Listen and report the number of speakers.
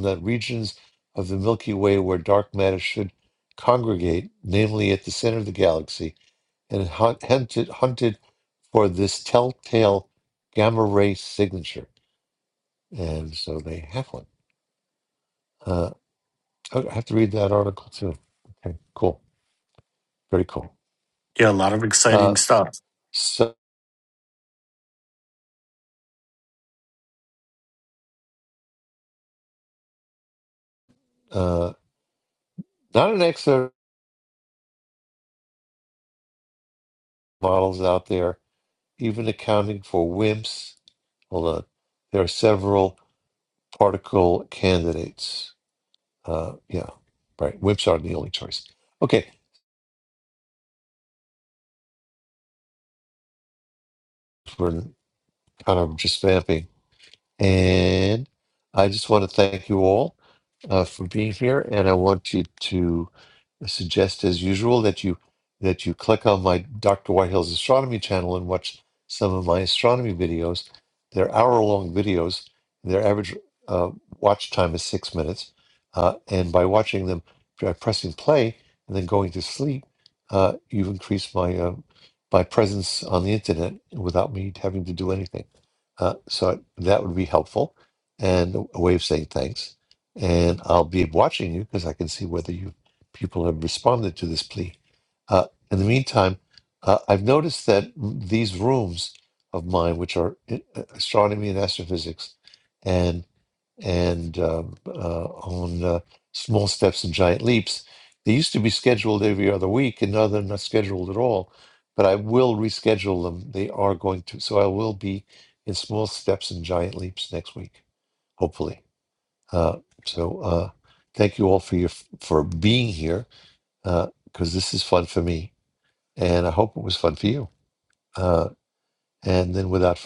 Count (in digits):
2